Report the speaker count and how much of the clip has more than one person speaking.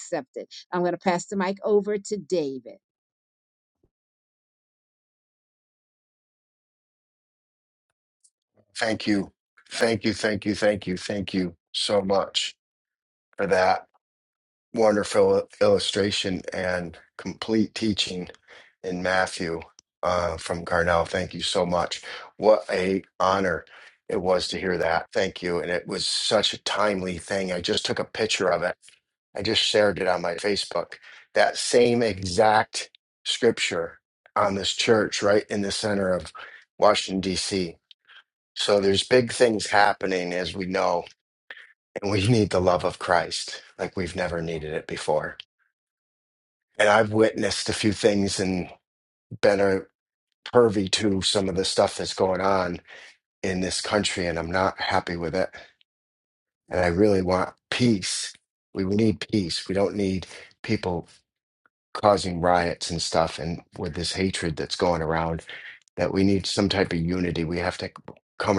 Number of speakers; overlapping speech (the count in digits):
2, no overlap